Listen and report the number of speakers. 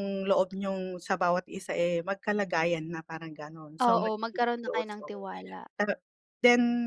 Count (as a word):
two